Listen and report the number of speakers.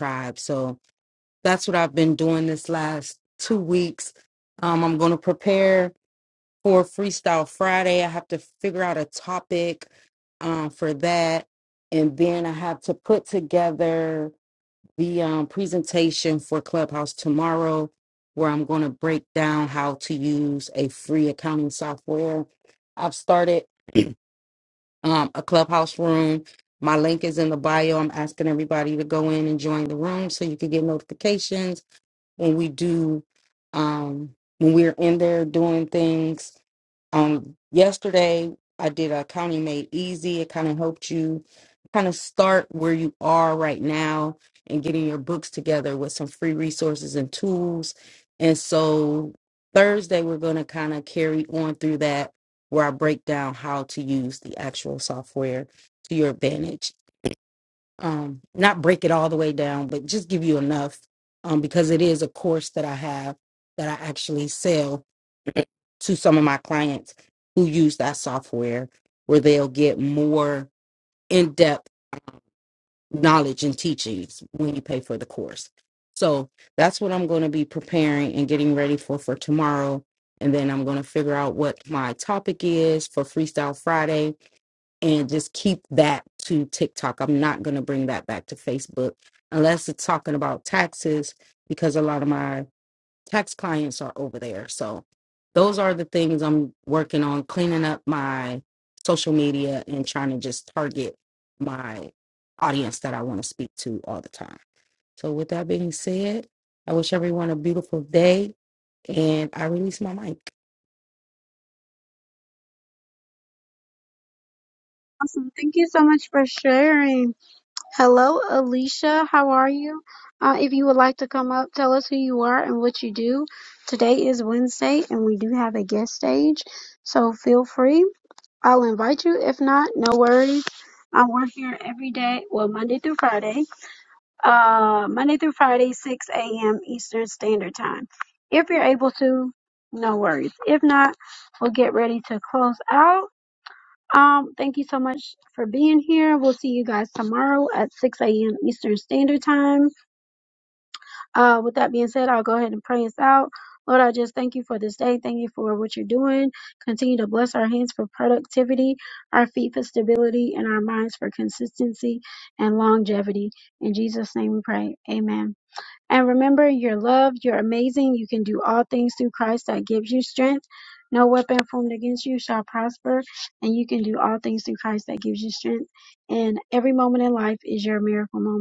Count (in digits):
2